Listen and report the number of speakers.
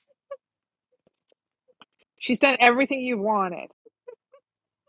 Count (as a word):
one